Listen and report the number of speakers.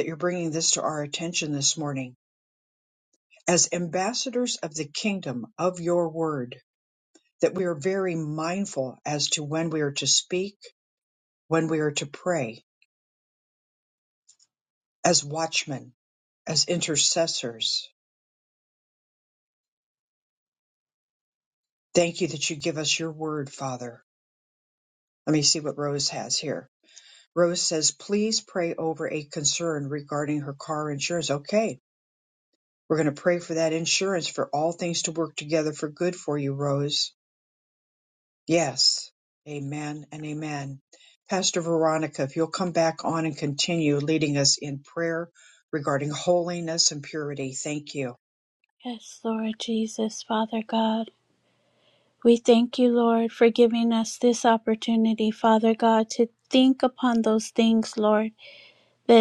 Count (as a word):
two